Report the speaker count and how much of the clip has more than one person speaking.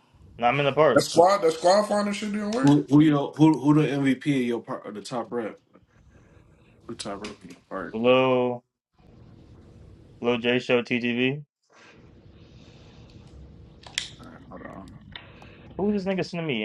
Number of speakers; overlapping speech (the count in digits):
3, about 1%